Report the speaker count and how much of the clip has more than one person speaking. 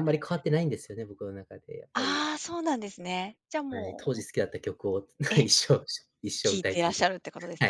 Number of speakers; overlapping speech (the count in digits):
2, about 20%